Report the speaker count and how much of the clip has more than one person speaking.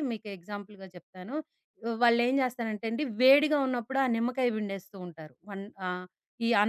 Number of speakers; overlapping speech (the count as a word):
one, no overlap